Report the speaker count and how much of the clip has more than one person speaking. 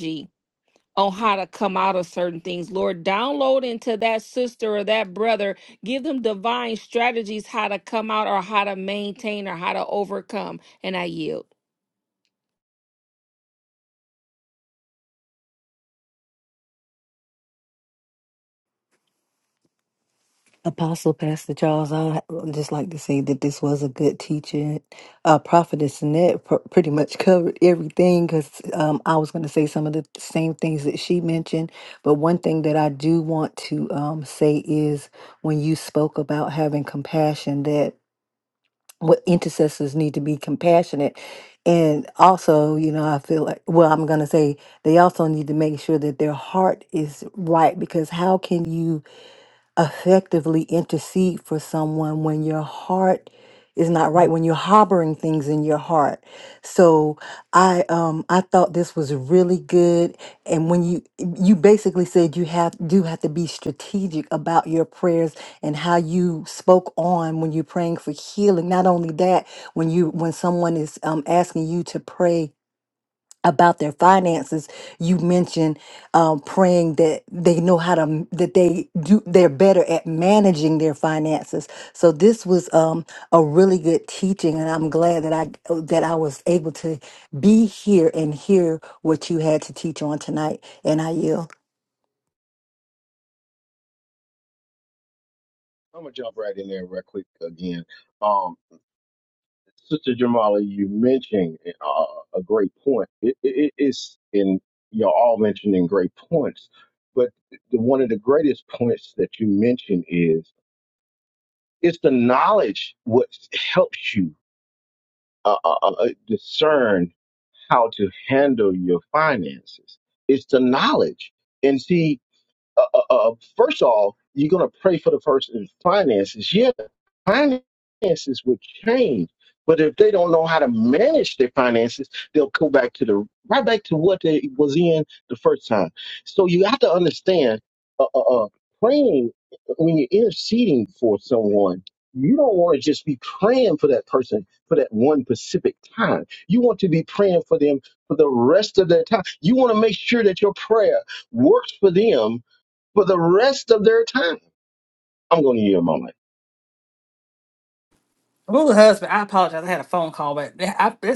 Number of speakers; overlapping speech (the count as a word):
four, no overlap